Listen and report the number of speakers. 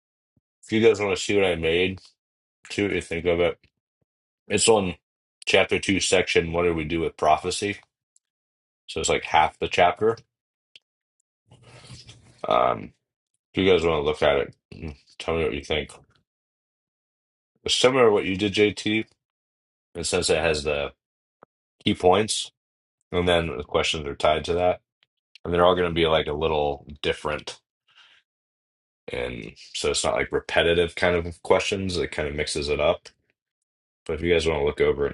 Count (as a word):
one